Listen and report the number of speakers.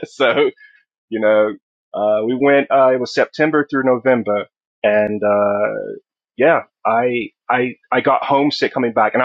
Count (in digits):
1